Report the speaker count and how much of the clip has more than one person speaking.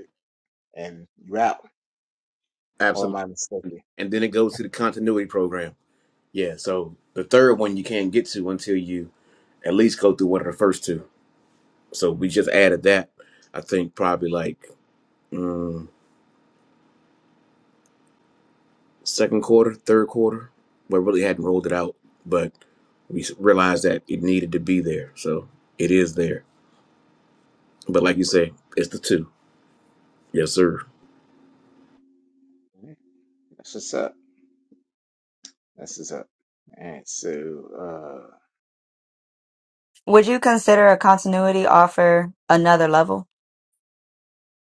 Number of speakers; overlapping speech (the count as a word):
three, under 1%